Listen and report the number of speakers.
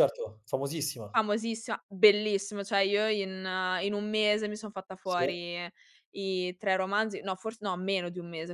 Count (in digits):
2